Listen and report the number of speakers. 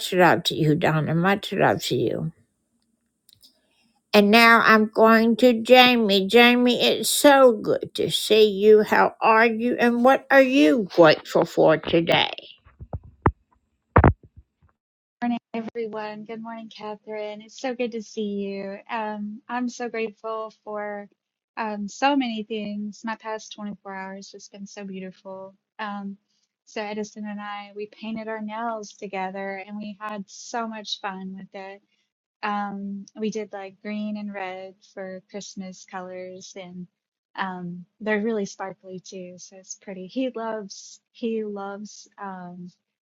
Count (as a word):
two